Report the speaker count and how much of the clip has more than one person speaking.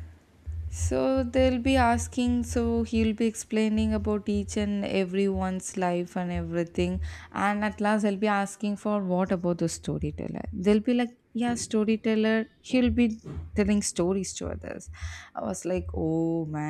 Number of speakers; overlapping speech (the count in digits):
1, no overlap